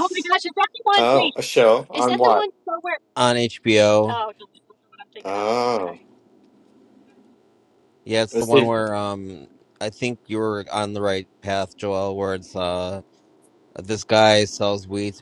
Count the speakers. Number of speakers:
3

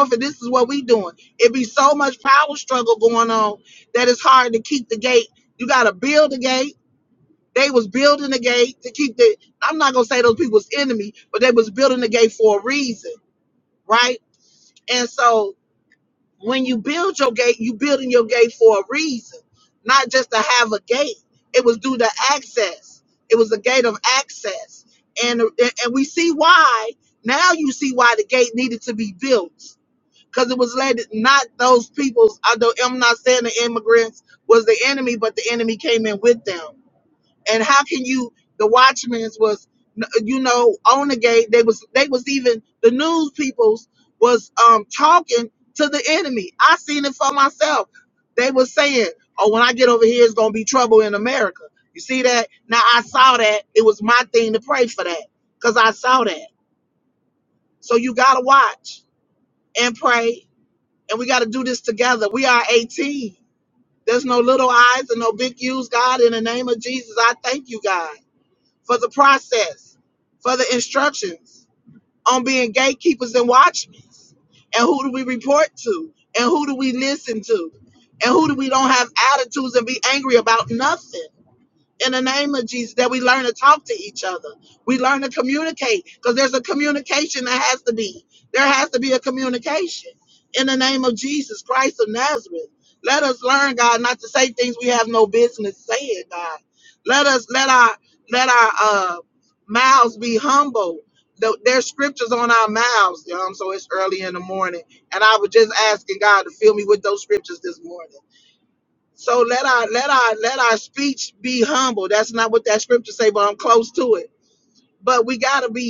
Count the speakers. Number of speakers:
1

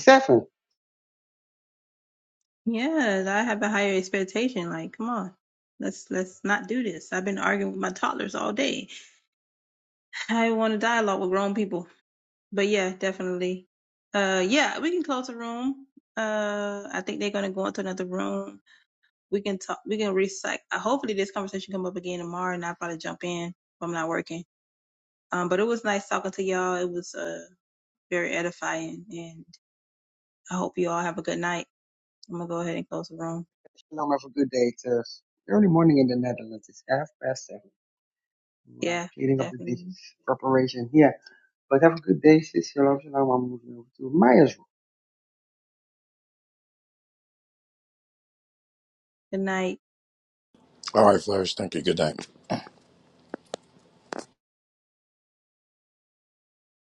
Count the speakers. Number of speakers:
3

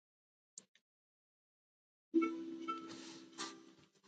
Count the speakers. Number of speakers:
0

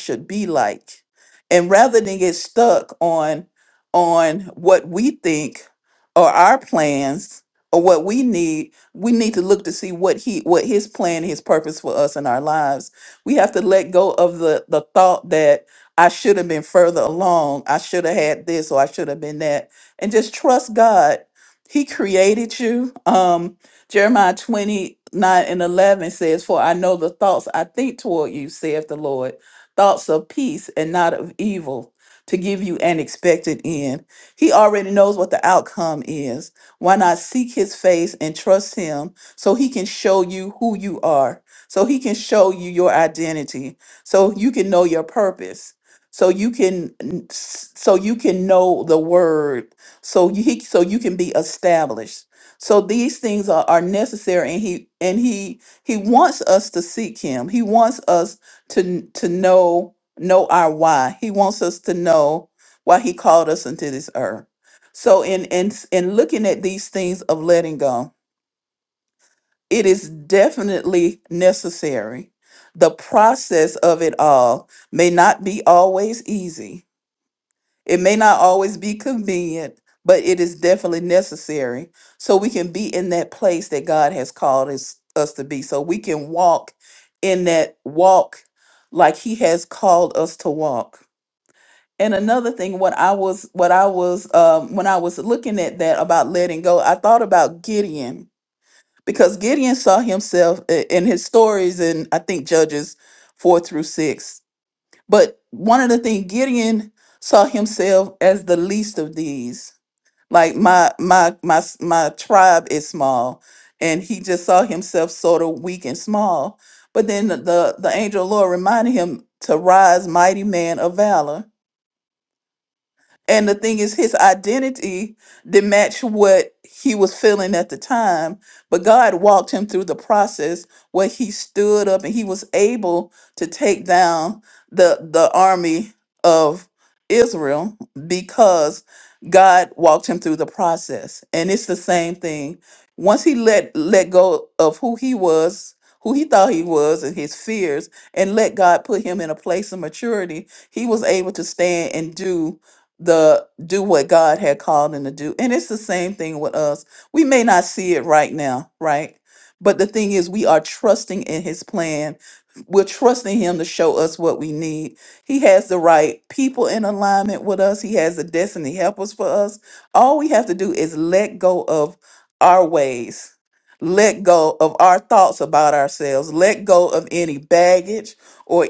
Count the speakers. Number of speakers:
1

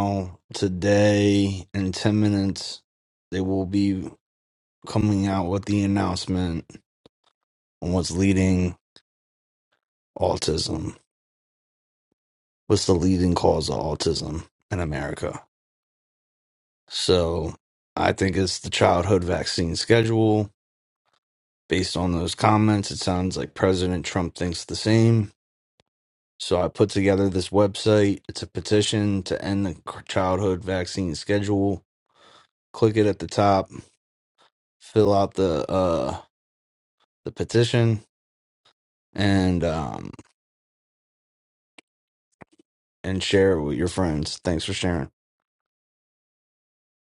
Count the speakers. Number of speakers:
1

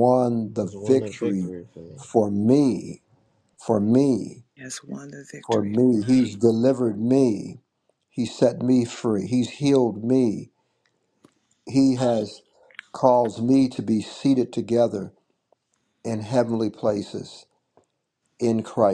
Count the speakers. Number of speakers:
3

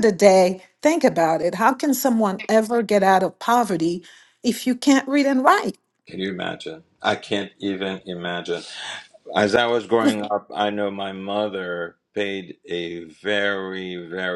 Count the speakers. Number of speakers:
2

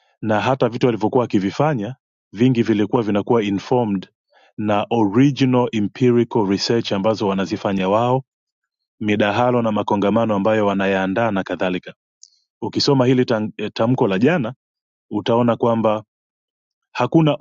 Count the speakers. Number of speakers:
1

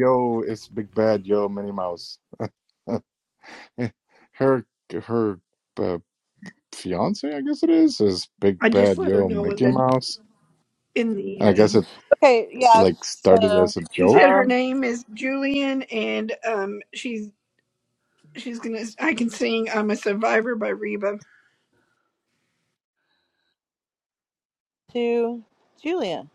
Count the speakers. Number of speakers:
3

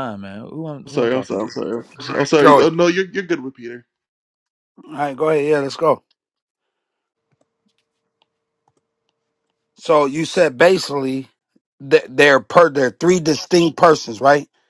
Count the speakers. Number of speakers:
3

